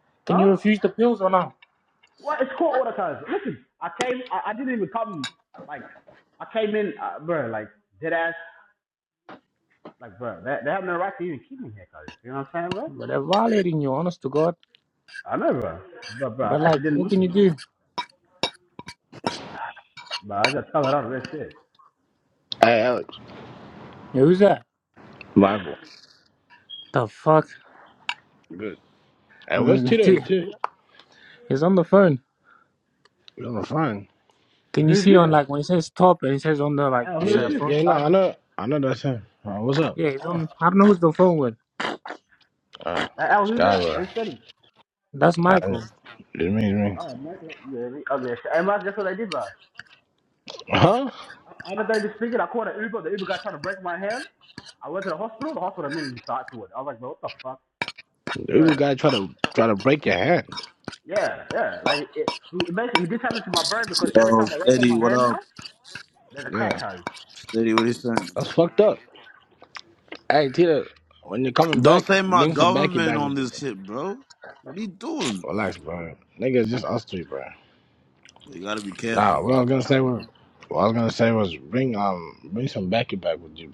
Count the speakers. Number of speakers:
four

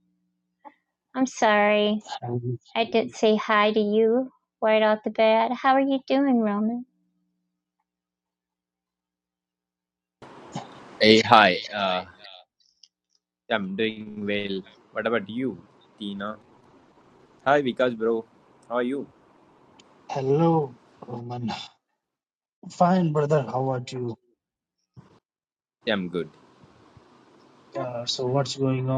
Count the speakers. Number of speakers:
three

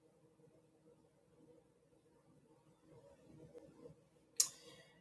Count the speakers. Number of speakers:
zero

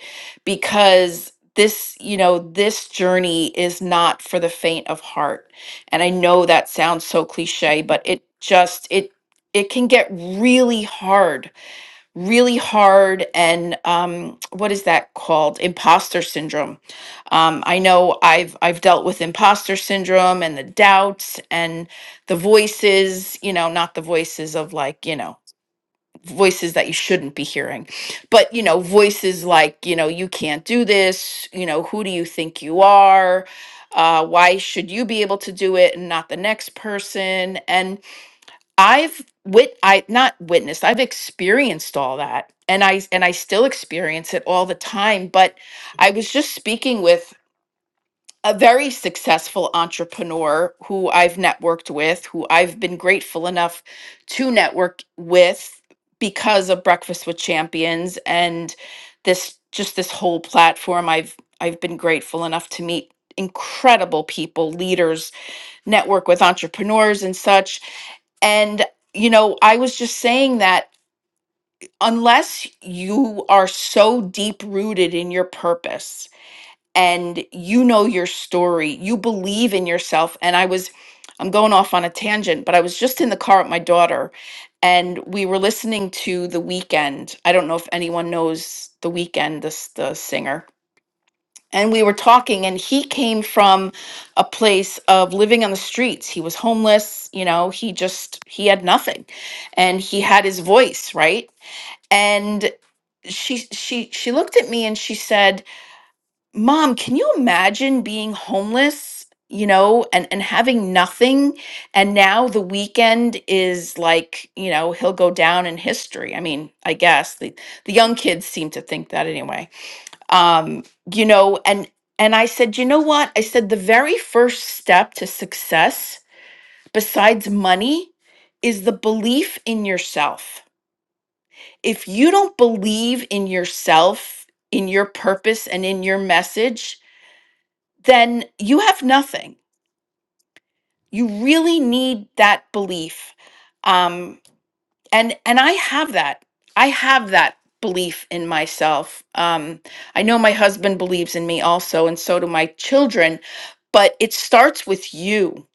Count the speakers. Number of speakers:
one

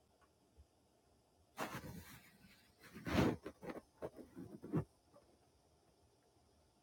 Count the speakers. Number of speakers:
zero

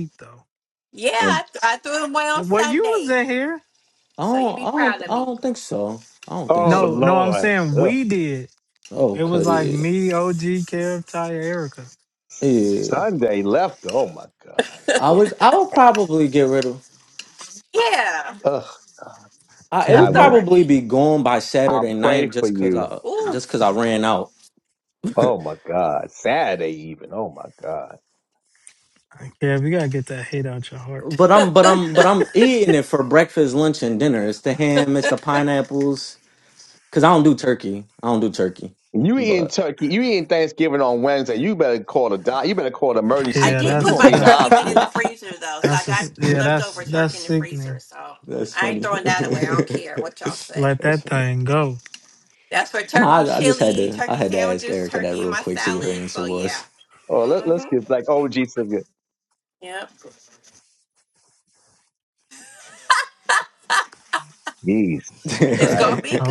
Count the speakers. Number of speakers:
four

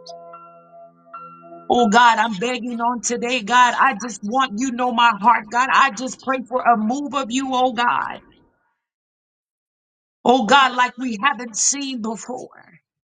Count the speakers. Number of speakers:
one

